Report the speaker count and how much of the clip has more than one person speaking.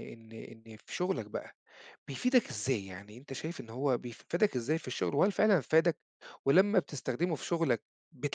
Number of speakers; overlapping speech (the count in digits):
1, no overlap